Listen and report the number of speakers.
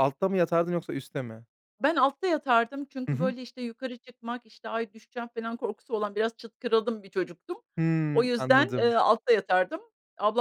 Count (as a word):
two